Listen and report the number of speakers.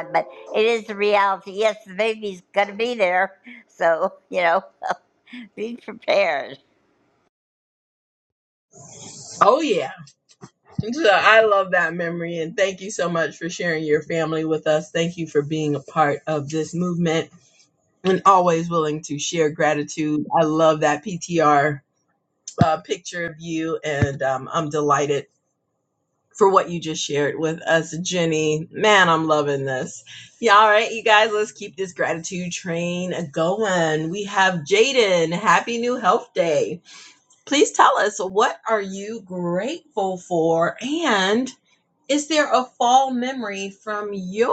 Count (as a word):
two